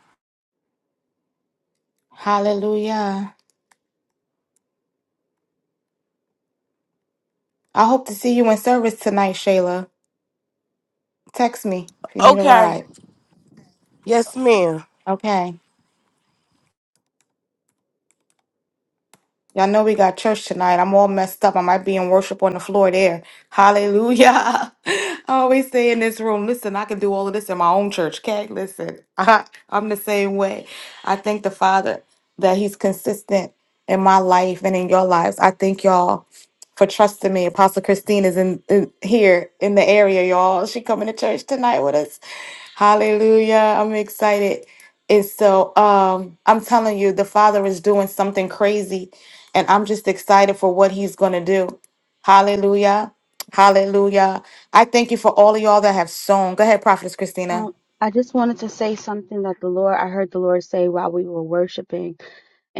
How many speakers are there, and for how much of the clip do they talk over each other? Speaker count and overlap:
3, about 1%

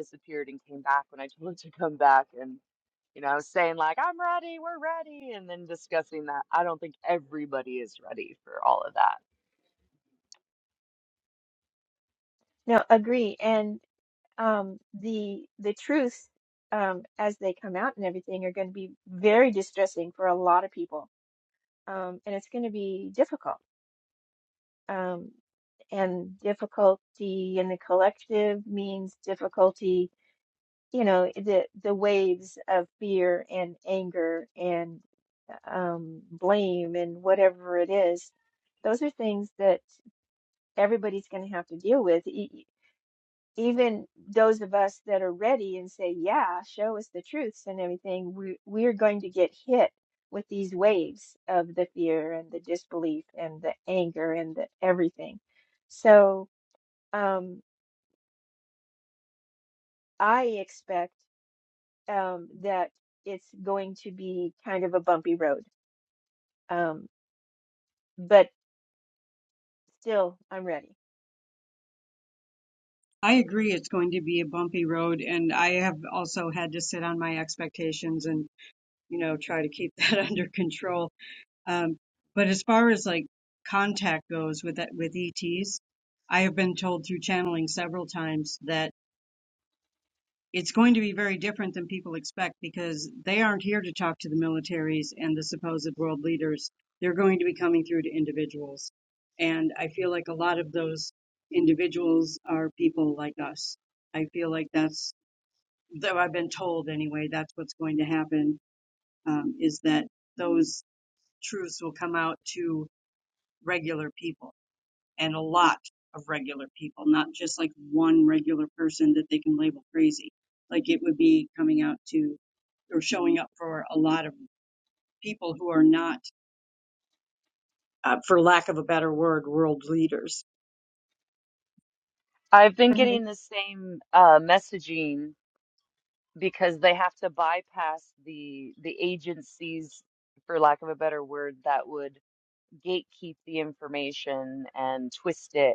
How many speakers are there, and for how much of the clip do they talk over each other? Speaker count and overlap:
3, under 1%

